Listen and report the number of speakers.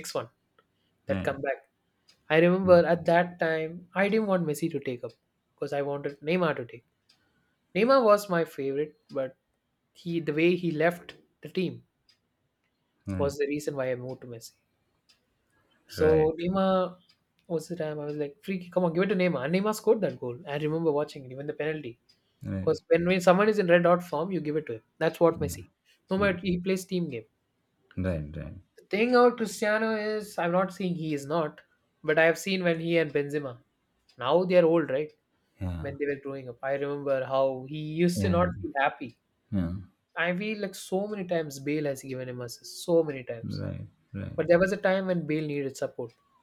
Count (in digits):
2